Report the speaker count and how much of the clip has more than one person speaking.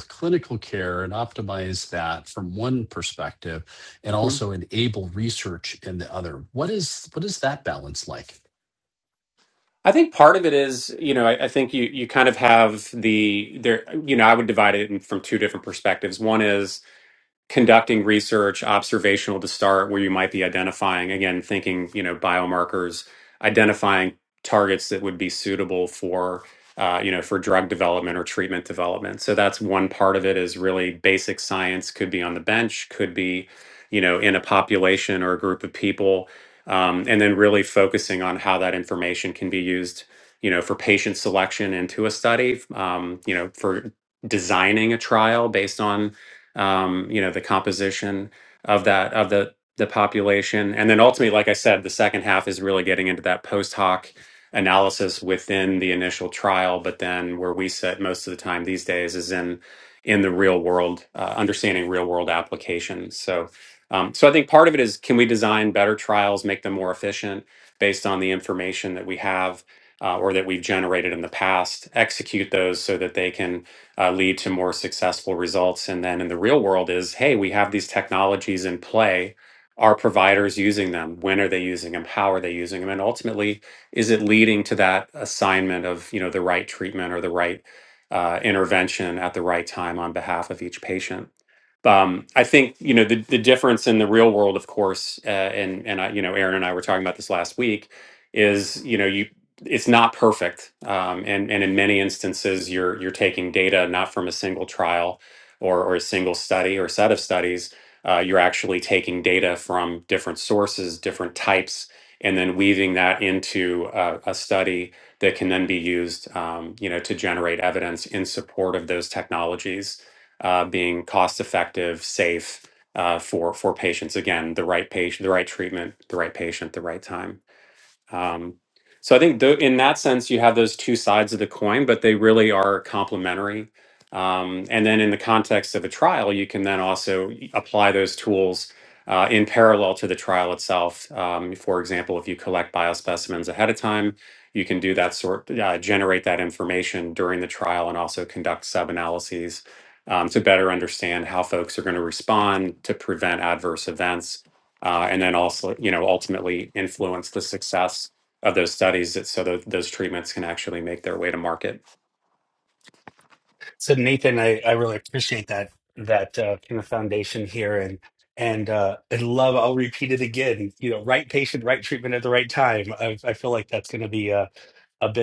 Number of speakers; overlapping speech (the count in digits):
3, under 1%